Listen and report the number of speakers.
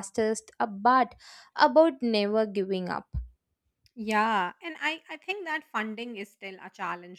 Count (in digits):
2